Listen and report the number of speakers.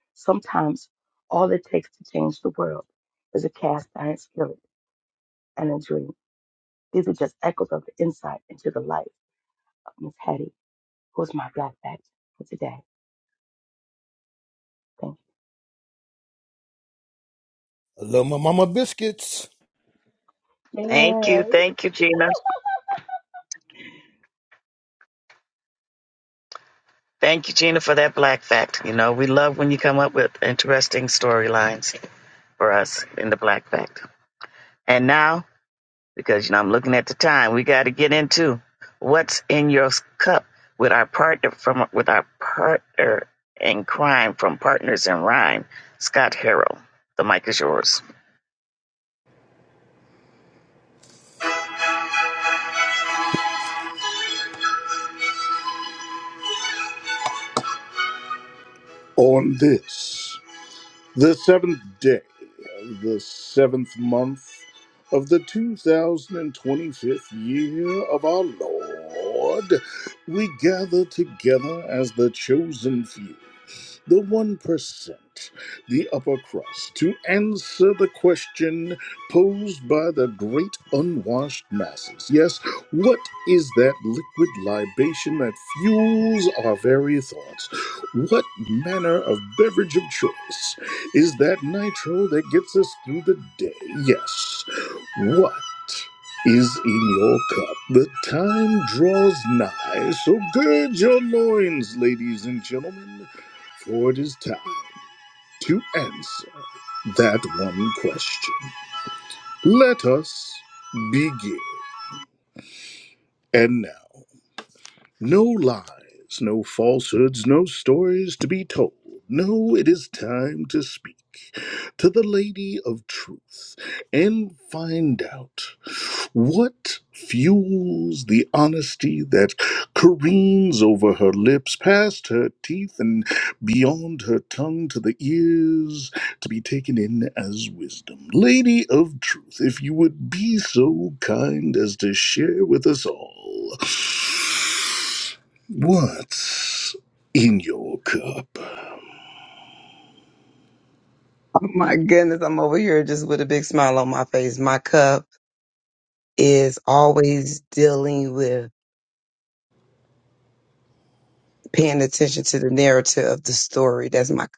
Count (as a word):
five